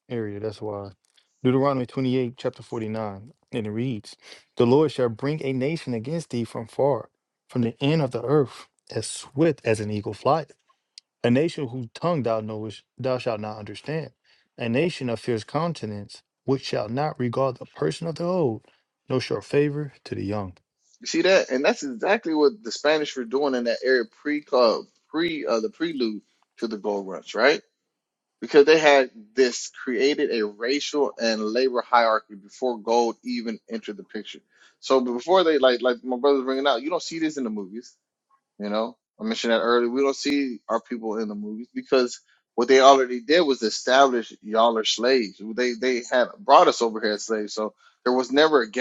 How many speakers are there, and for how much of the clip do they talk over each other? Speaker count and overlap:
two, no overlap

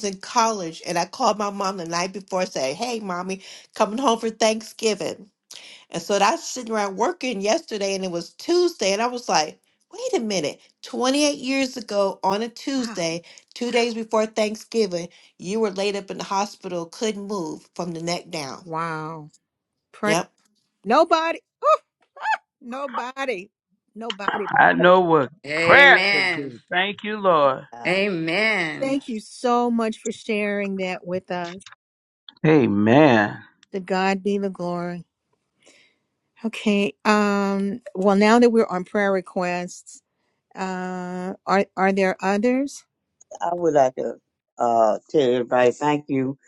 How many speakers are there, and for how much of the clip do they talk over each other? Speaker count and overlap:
five, about 4%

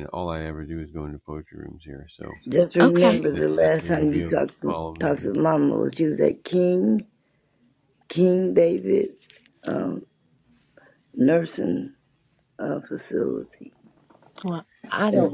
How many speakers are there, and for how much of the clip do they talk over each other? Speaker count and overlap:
three, about 19%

